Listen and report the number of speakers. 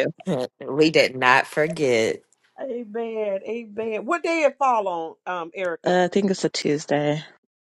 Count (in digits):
3